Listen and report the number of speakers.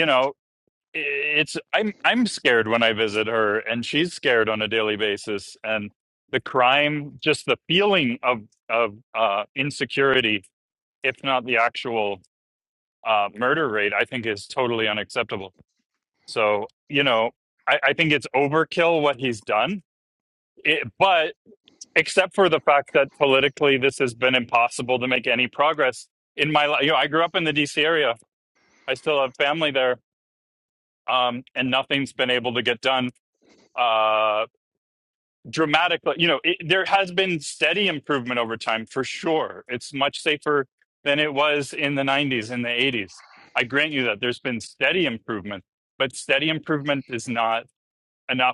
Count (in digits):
1